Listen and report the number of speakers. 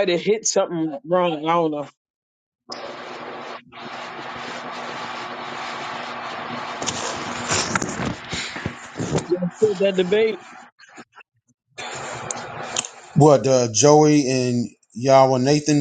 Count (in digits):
2